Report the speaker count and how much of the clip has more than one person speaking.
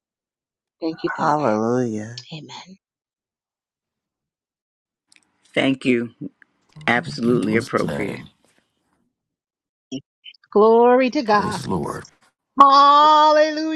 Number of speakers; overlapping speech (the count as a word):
four, about 15%